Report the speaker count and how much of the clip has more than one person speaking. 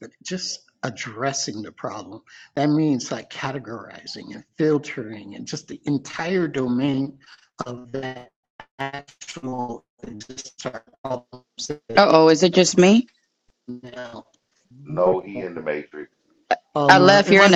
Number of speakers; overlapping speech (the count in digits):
3, about 4%